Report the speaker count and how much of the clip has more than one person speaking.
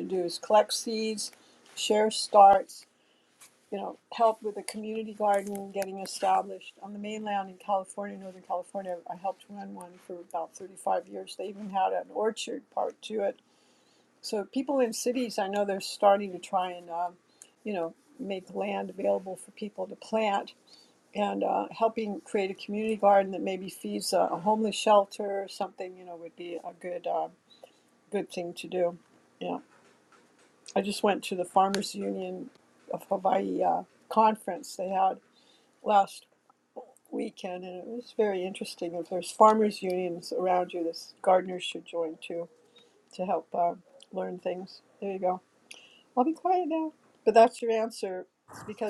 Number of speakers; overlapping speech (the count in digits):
1, no overlap